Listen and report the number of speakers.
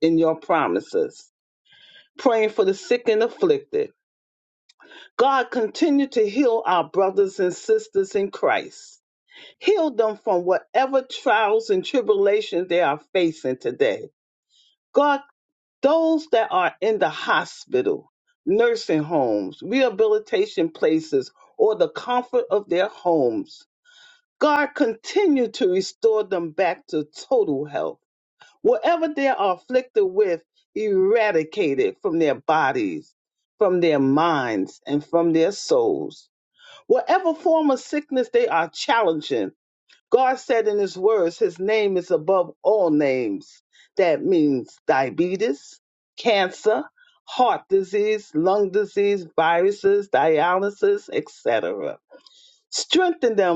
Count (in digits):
1